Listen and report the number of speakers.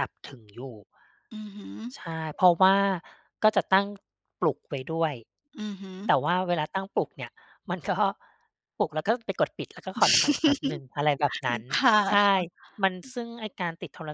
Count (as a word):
two